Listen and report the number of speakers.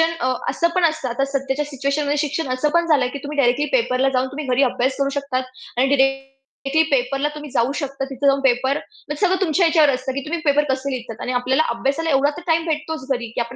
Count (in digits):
1